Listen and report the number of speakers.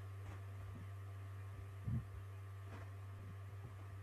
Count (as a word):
zero